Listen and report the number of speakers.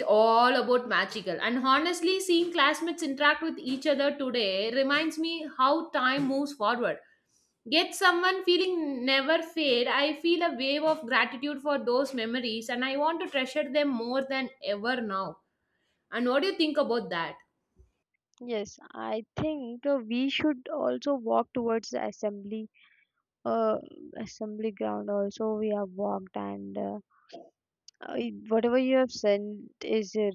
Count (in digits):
2